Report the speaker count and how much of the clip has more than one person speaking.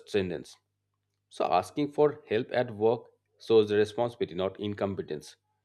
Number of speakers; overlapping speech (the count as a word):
one, no overlap